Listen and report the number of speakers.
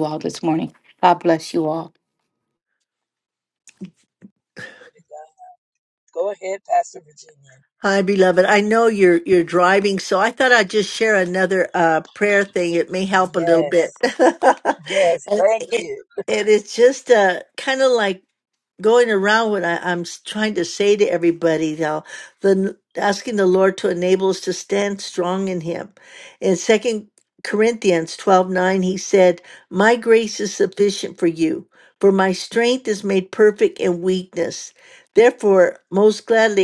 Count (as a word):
three